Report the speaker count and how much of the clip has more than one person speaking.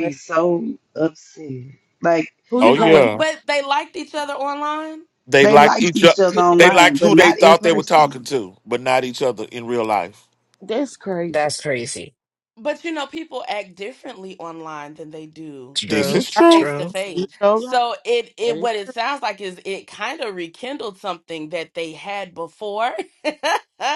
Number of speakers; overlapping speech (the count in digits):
5, about 21%